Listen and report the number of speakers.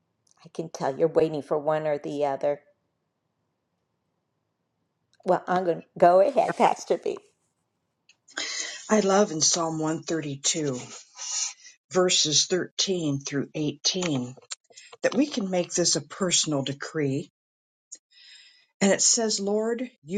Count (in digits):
2